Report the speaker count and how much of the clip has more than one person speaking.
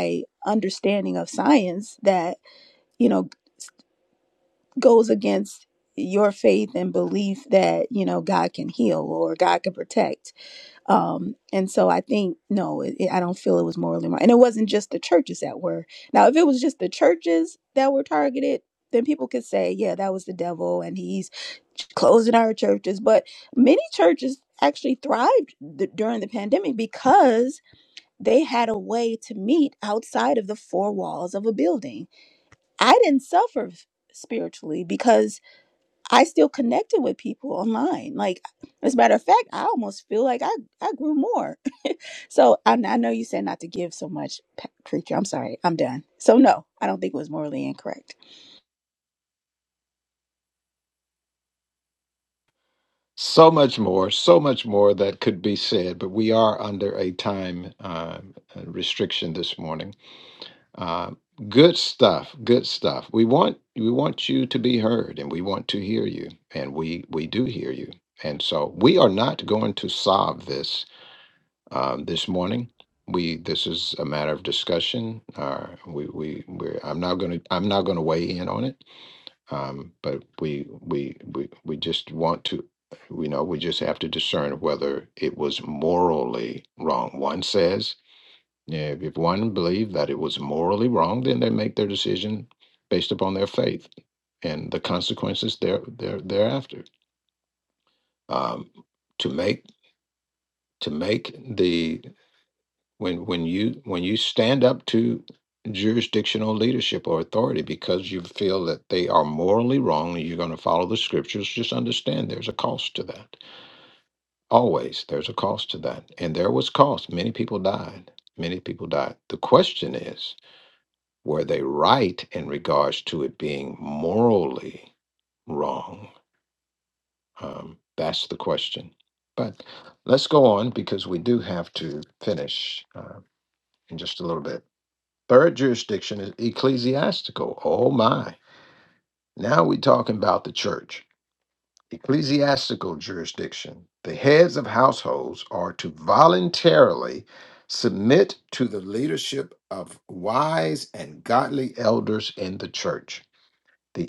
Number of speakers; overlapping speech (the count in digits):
2, no overlap